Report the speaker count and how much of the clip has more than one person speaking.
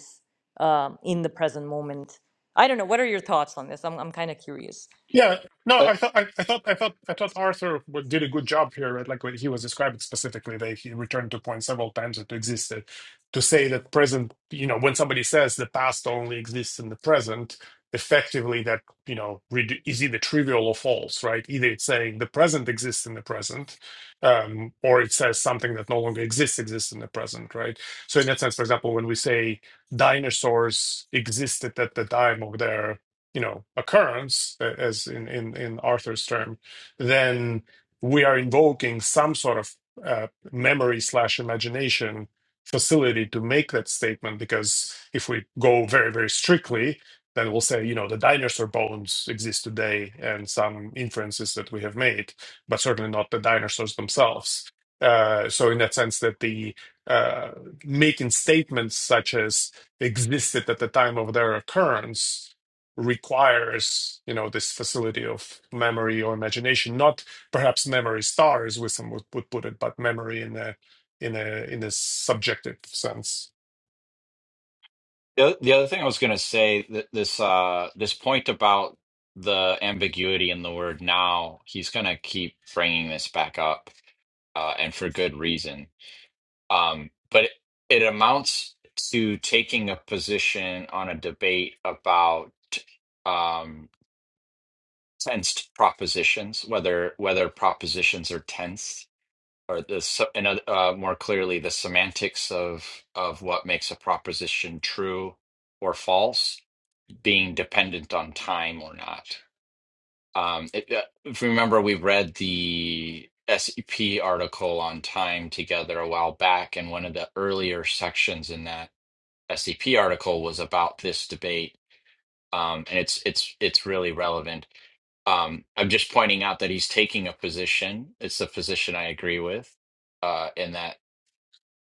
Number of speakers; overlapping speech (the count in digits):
3, no overlap